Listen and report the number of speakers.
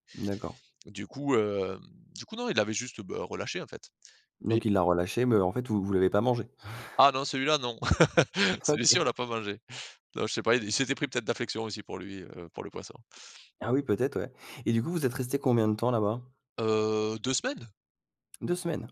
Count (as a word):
two